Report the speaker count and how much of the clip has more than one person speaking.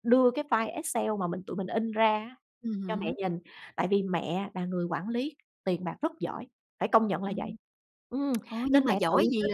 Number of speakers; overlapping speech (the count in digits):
2, about 17%